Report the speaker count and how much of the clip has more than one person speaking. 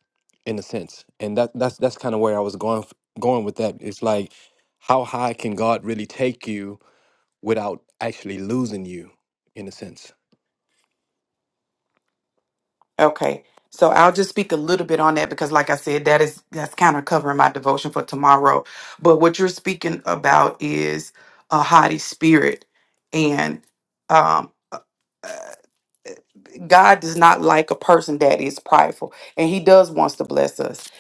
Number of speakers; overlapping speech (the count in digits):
2, no overlap